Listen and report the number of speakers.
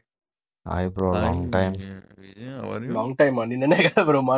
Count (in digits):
3